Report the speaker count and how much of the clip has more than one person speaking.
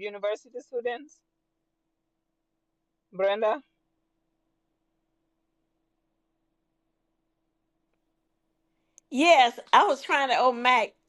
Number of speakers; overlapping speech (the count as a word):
two, no overlap